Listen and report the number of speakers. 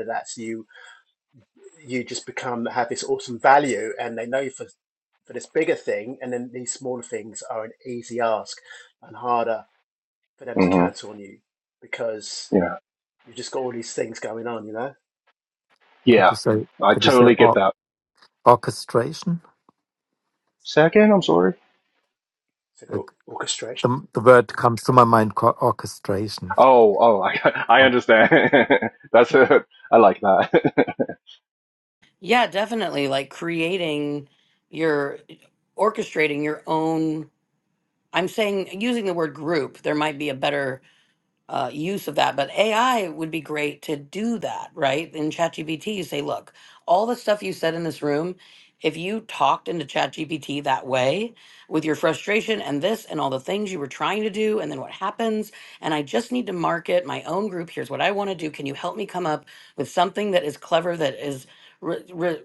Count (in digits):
4